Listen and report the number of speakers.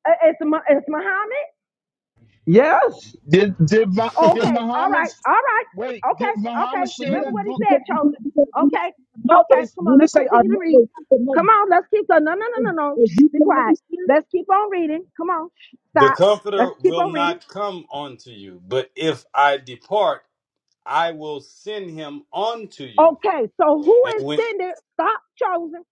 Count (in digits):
4